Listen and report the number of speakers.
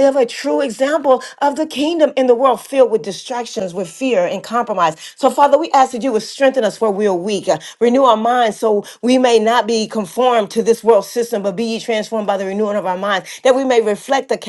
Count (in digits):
1